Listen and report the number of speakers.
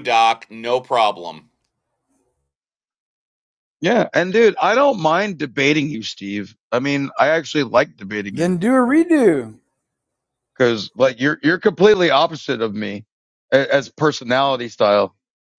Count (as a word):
three